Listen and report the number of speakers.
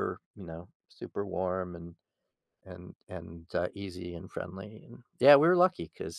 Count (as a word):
one